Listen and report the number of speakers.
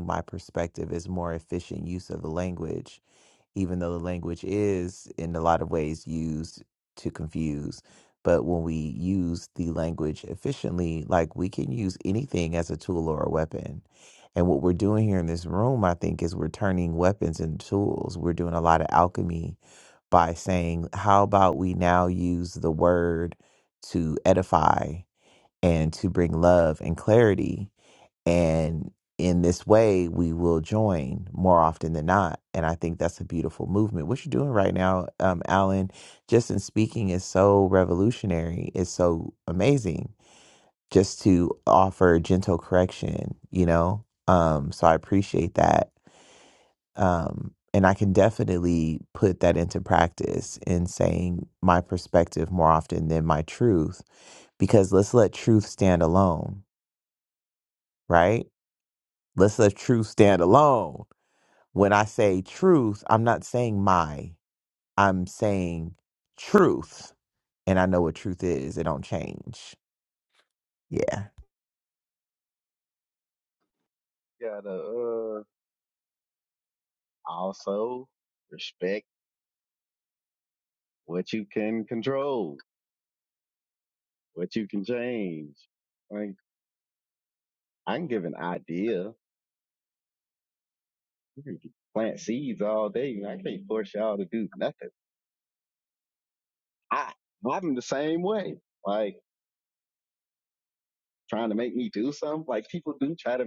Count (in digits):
2